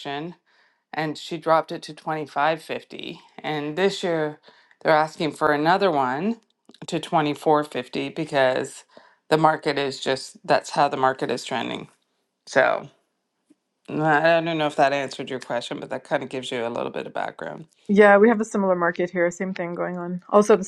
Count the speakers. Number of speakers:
2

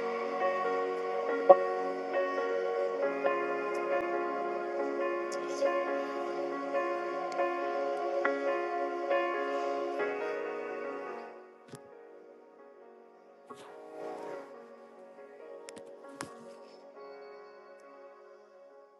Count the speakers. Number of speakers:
0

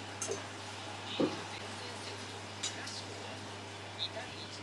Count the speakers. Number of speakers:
0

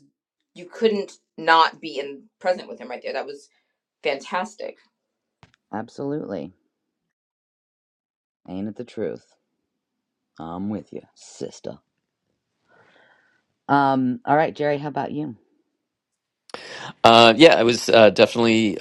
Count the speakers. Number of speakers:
3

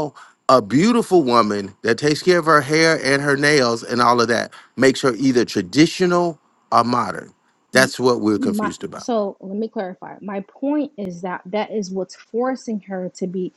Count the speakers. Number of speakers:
2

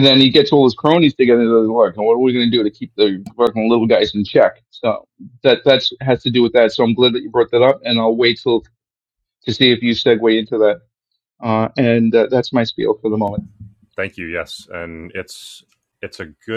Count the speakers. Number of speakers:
2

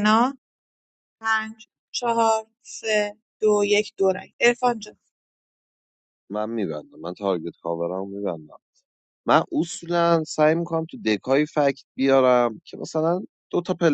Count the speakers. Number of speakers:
2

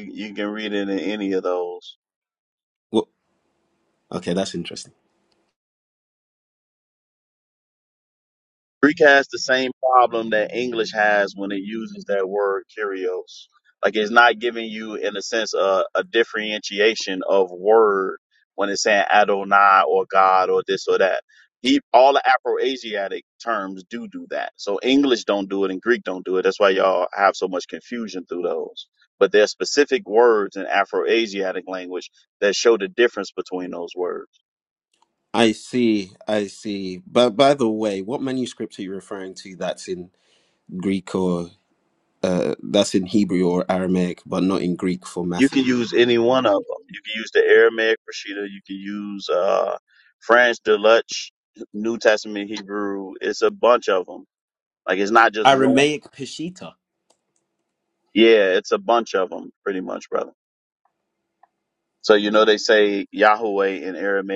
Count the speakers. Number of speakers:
2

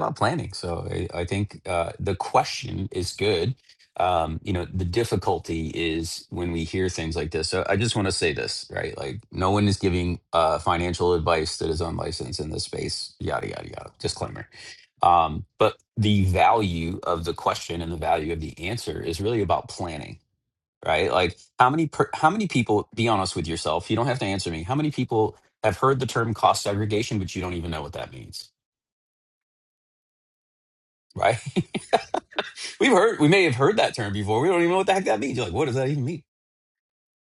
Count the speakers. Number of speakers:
1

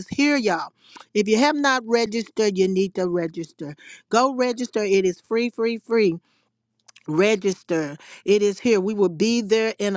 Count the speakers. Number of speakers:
1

